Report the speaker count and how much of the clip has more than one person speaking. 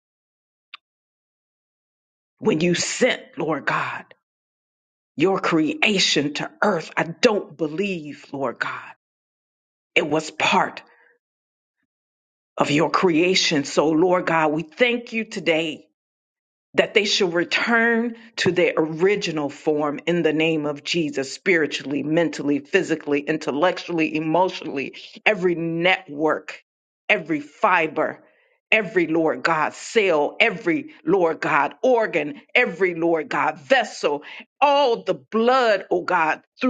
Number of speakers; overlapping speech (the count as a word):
one, no overlap